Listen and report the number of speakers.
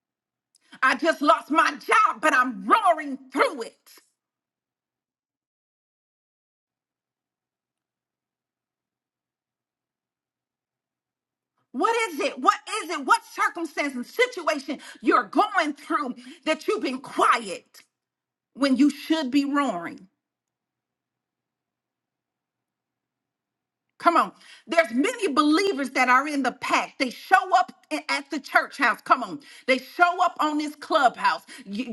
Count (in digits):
1